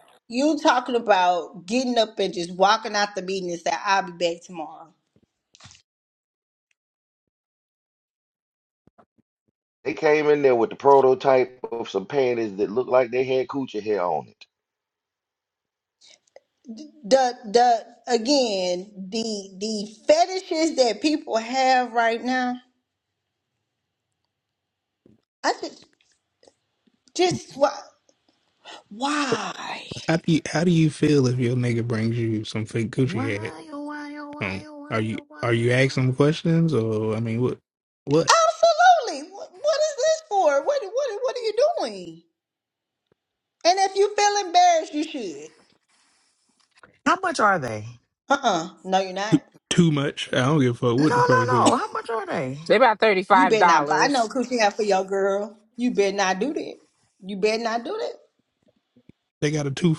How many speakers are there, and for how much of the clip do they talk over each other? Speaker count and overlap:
5, about 6%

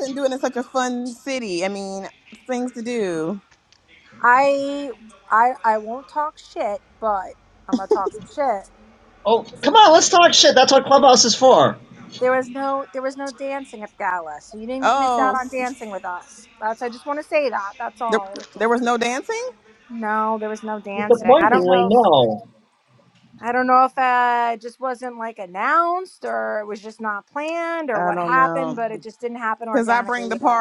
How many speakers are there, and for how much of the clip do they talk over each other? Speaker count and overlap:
3, about 12%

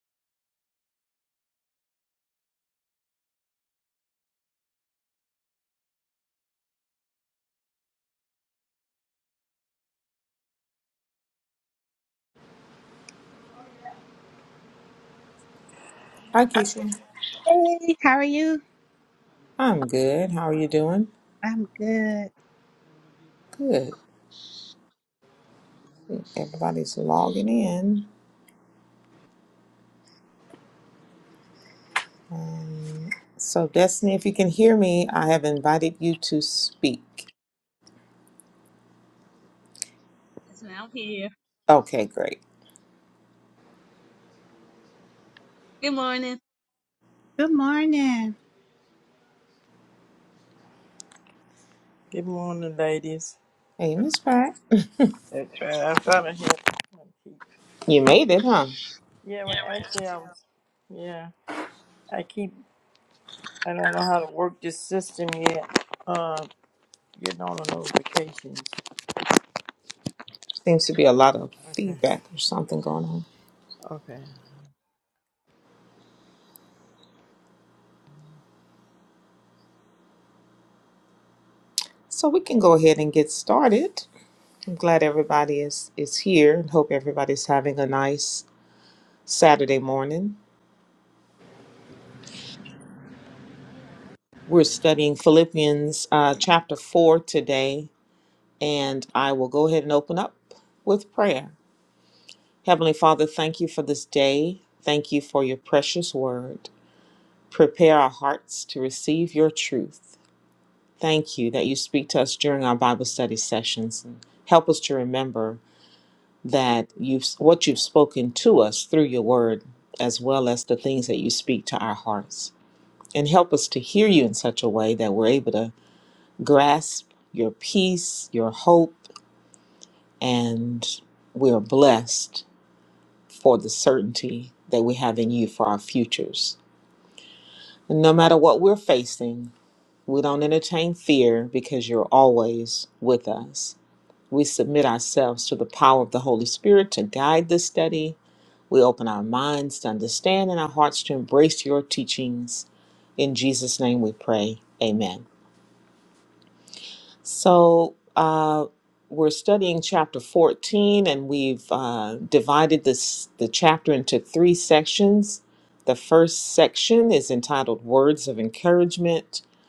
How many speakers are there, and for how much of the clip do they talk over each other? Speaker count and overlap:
4, under 1%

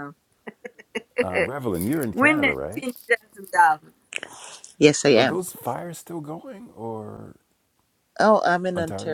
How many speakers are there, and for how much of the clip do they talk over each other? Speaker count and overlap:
3, about 15%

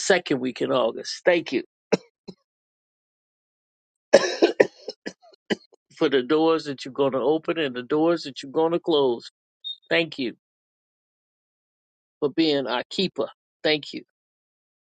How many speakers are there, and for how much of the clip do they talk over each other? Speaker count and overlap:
1, no overlap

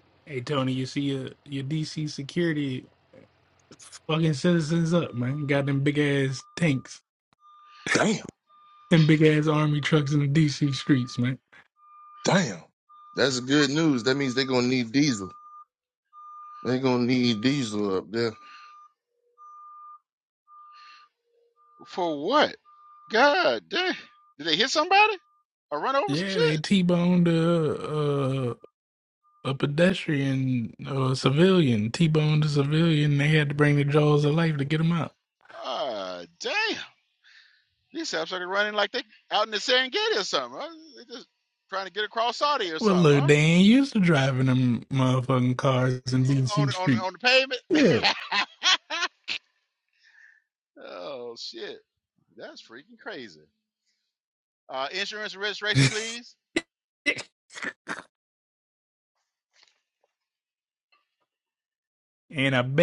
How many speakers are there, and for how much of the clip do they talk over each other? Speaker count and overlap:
3, about 3%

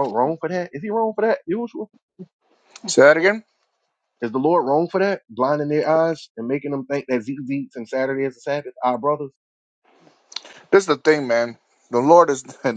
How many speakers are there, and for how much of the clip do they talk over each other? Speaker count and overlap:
2, no overlap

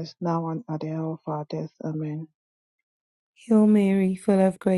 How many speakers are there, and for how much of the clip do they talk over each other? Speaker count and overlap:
2, no overlap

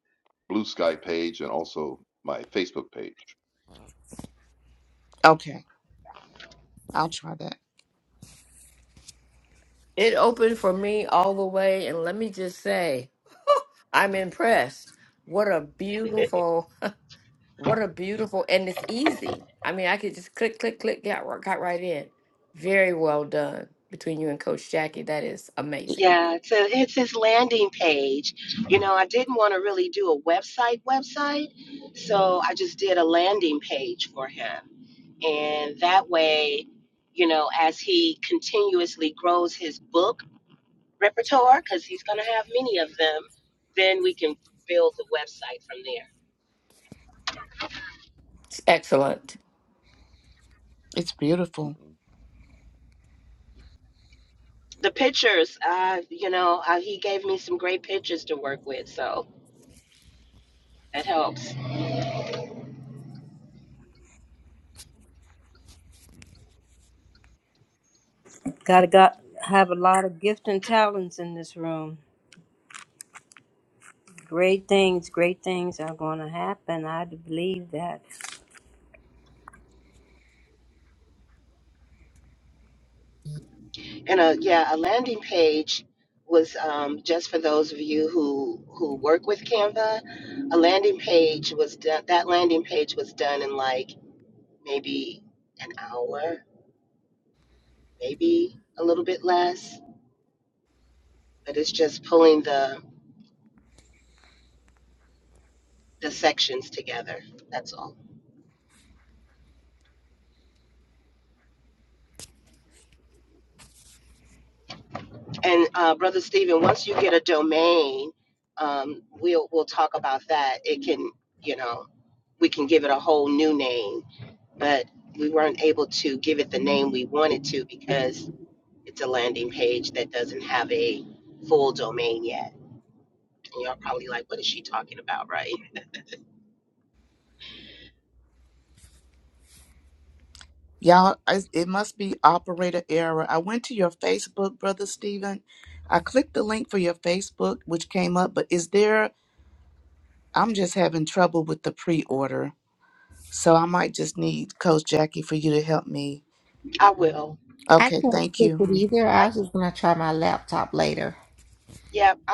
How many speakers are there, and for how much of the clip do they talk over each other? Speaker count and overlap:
6, about 1%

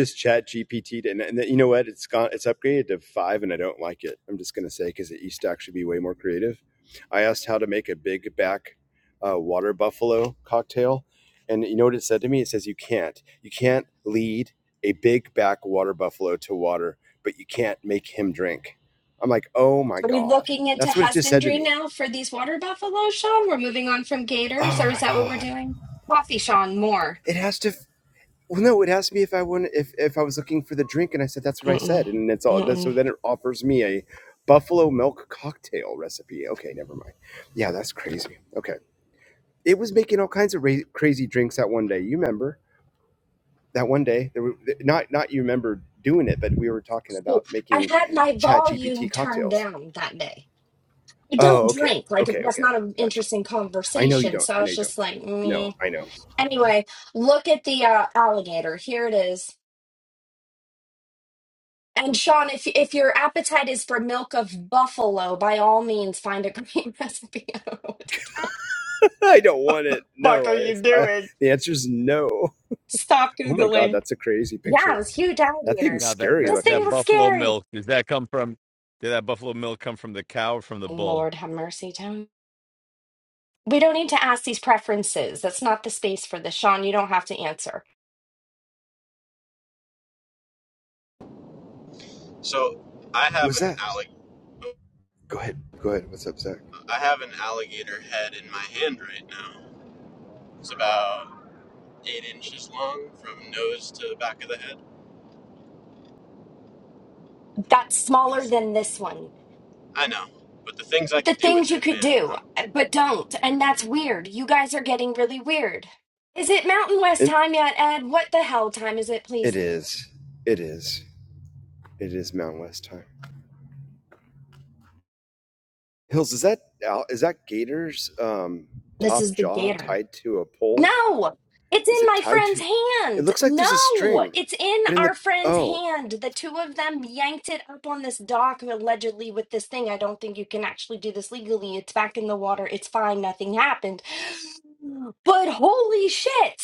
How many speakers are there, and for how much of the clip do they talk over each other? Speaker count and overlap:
4, about 13%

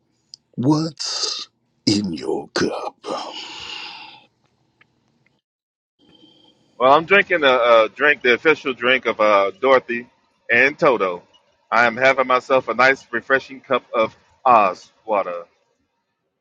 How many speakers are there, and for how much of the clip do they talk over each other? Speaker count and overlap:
2, no overlap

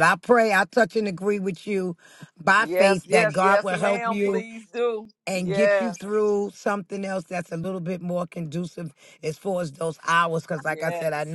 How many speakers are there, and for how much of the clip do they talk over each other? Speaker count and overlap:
2, about 25%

